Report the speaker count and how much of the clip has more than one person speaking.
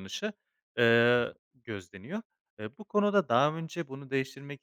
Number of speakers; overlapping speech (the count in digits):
1, no overlap